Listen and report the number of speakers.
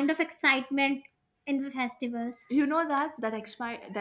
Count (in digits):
2